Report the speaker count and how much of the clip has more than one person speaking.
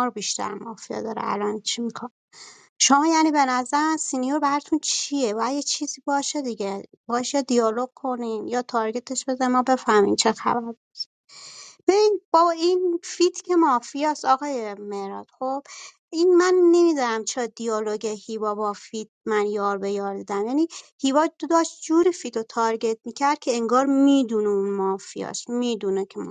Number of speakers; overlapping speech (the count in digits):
1, no overlap